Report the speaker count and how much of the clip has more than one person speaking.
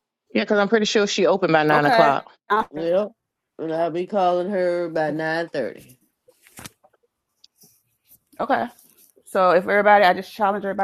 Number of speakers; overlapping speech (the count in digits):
3, about 4%